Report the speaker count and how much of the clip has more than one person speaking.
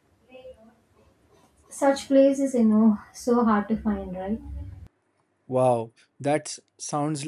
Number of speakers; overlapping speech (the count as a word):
two, no overlap